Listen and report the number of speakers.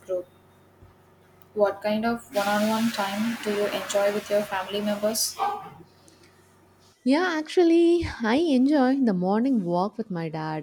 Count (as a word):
two